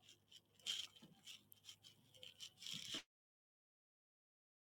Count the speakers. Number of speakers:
0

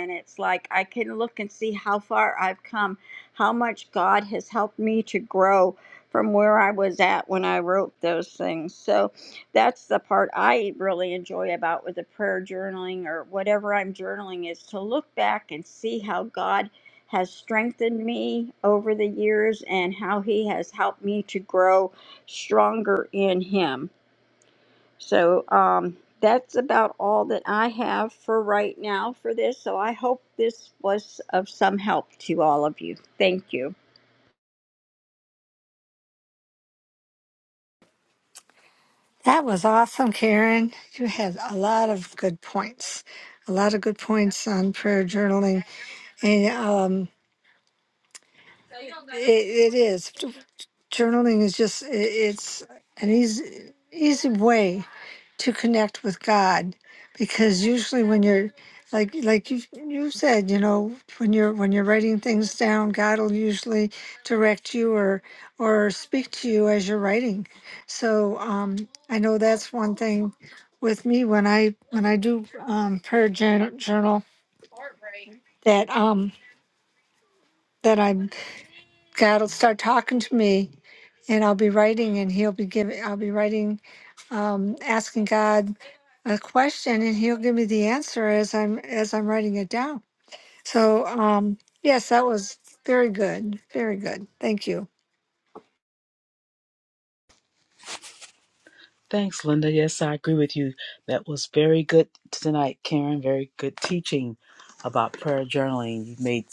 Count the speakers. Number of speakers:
3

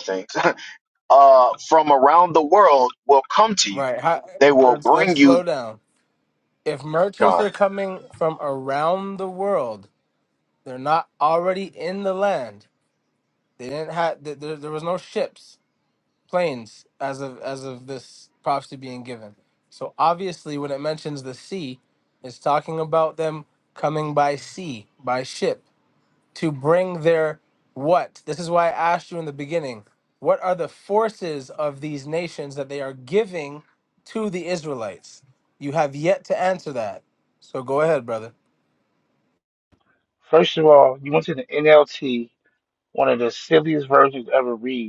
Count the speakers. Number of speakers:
3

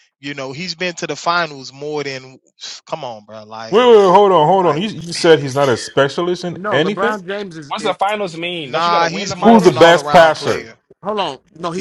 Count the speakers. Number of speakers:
4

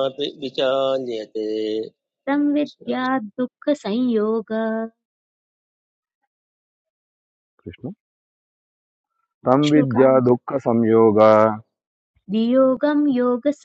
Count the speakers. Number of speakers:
3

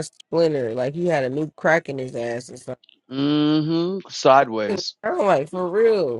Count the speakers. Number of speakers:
2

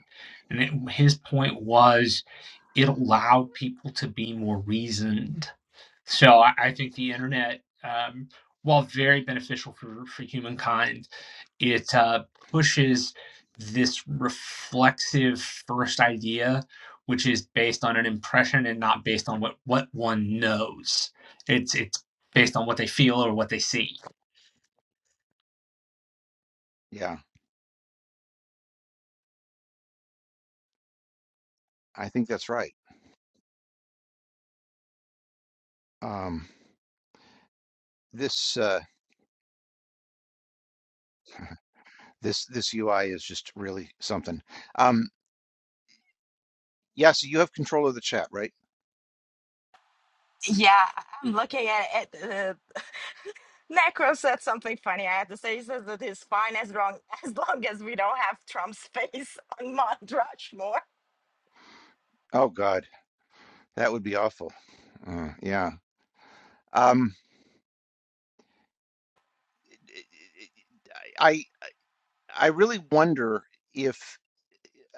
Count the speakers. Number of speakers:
3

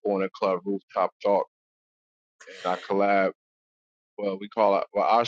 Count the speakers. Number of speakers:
1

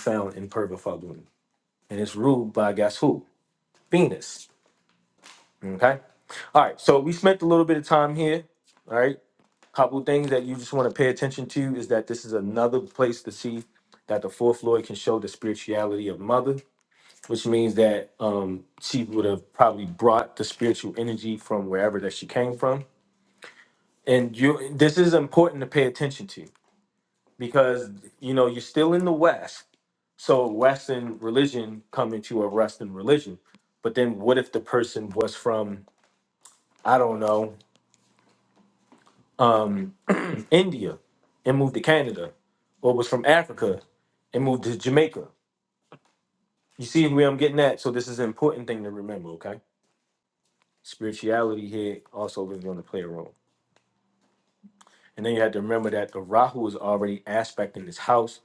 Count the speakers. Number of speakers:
1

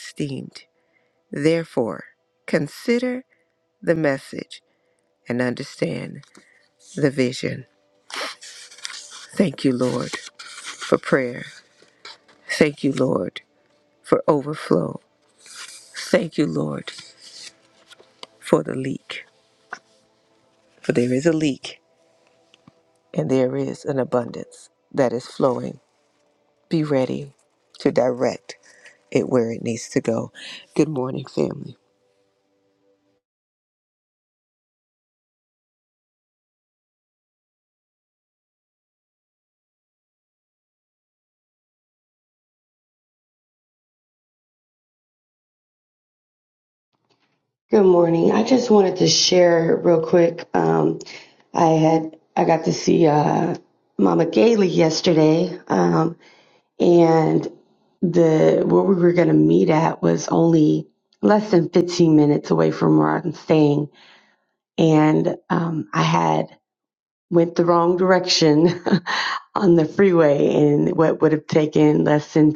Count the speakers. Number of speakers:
2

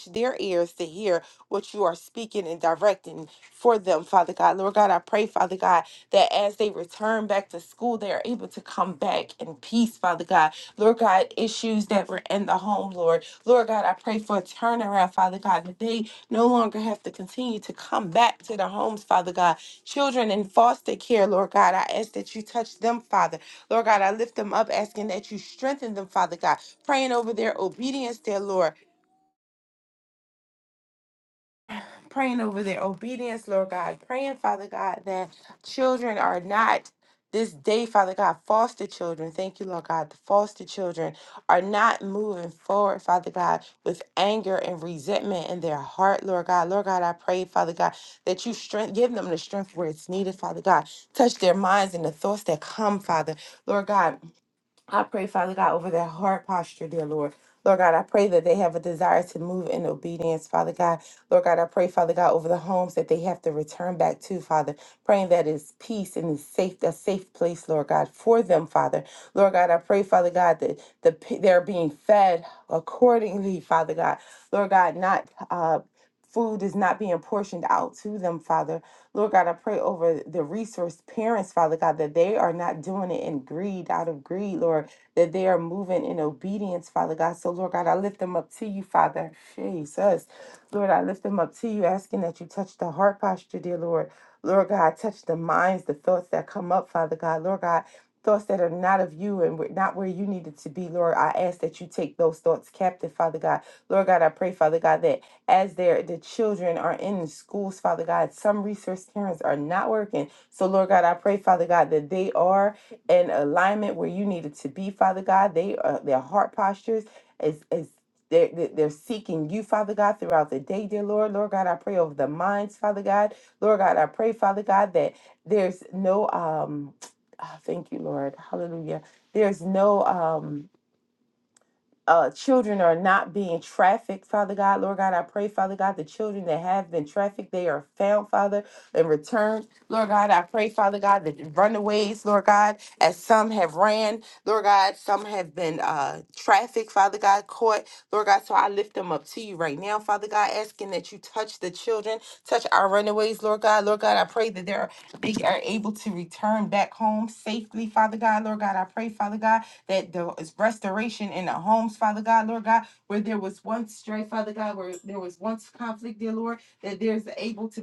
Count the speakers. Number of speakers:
1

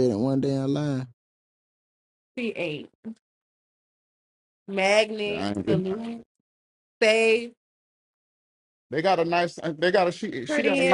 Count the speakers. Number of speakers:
3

